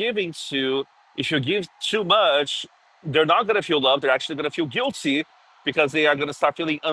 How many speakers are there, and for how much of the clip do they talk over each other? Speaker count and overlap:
one, no overlap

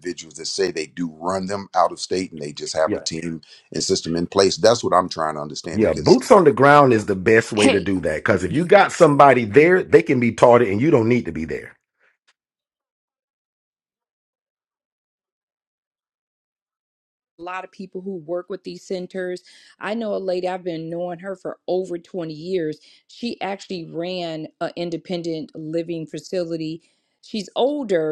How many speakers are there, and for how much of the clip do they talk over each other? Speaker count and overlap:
three, about 3%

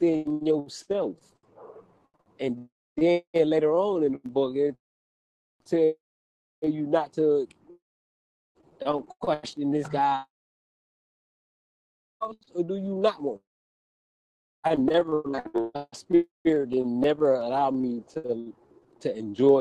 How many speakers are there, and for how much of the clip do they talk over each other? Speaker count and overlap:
one, no overlap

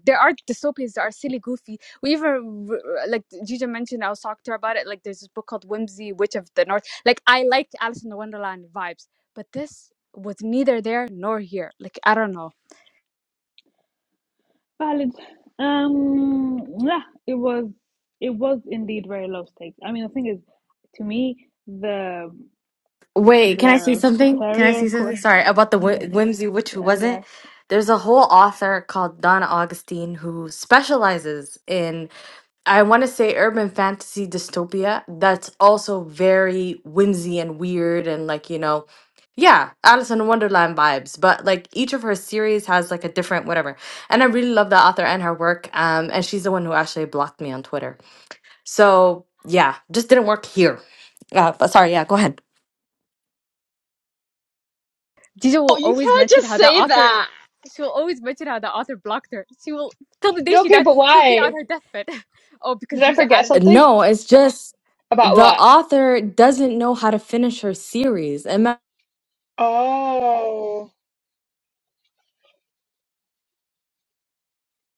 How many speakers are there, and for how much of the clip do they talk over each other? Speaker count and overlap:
four, about 8%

